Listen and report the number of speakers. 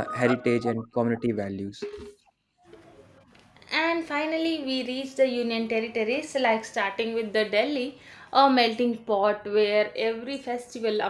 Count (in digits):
2